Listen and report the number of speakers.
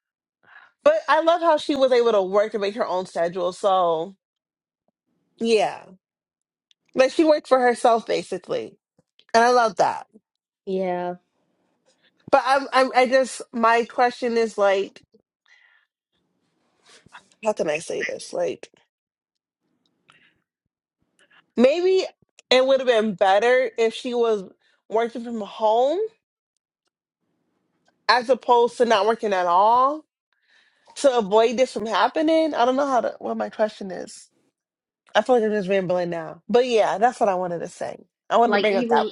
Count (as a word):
two